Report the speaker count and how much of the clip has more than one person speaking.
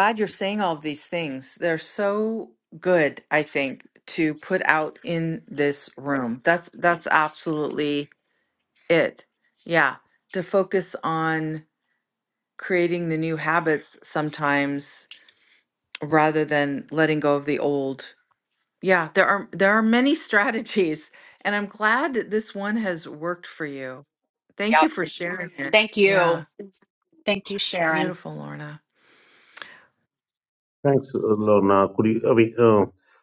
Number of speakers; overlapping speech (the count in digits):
3, about 3%